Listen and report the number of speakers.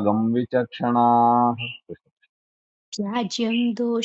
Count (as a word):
two